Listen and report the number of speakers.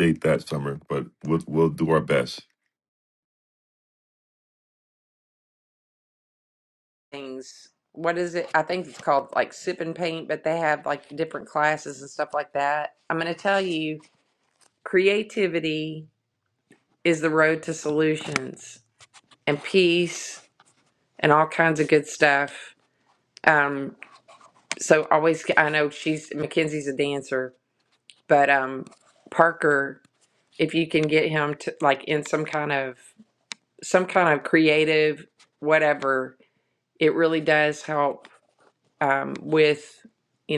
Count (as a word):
two